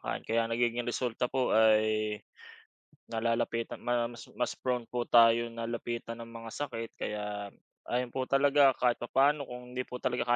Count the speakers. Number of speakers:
one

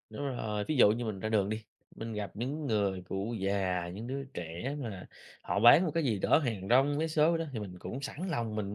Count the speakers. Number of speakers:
one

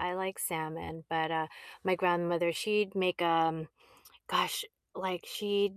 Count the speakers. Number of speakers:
one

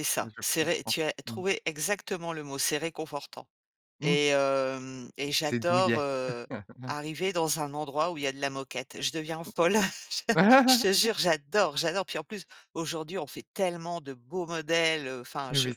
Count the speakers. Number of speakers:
two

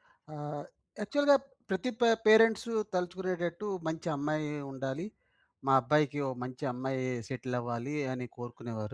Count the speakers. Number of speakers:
one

